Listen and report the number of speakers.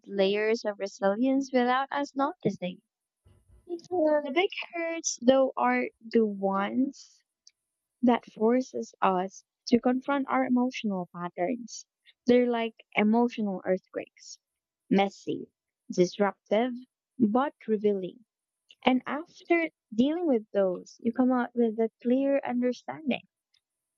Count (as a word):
one